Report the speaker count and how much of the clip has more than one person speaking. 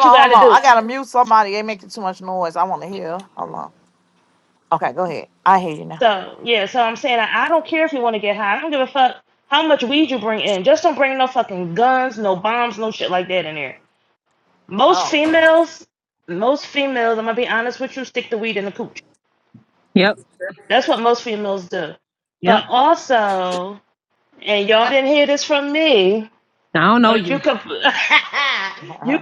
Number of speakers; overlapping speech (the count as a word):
three, about 5%